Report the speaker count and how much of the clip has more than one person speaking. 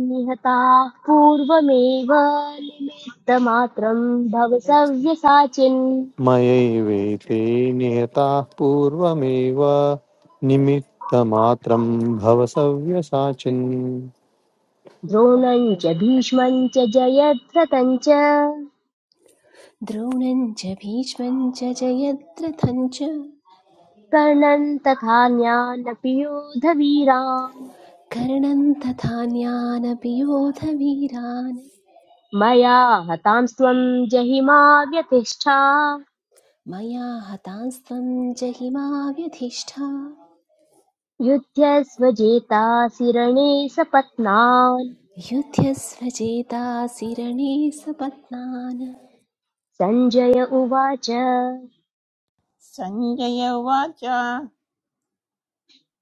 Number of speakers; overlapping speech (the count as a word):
four, no overlap